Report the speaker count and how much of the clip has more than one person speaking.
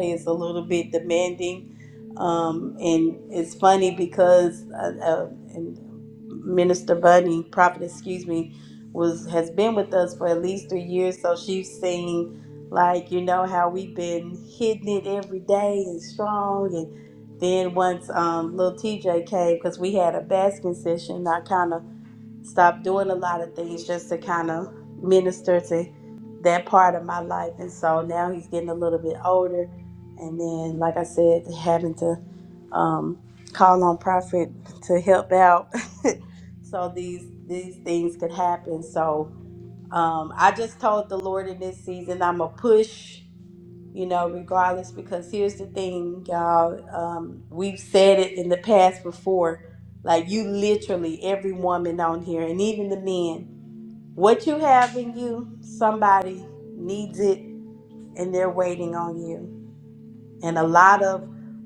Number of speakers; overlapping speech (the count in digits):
1, no overlap